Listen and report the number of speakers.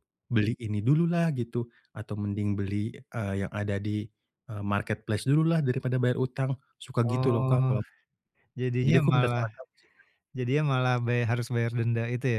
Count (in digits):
2